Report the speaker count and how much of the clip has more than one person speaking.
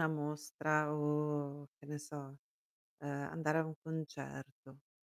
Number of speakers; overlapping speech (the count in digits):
1, no overlap